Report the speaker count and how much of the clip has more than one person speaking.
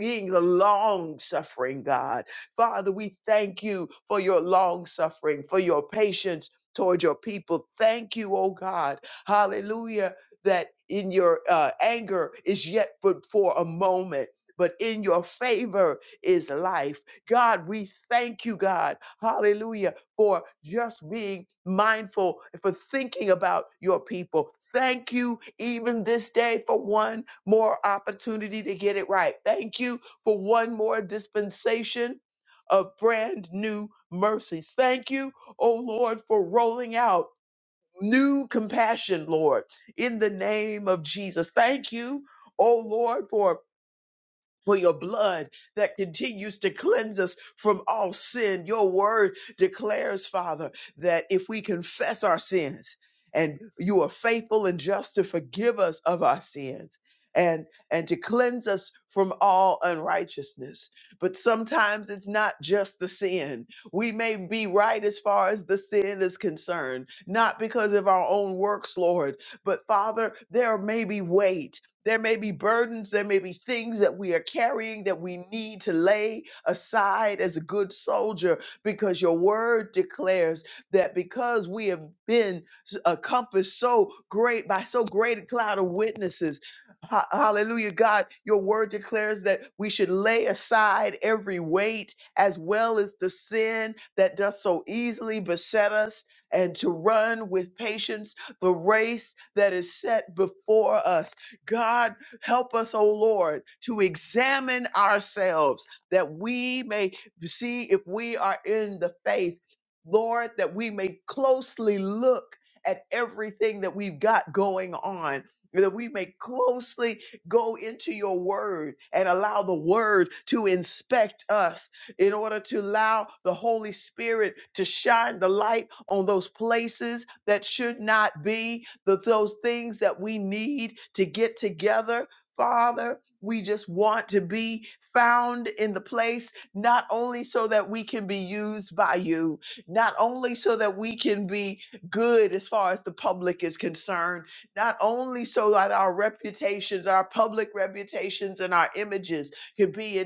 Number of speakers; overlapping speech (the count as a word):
one, no overlap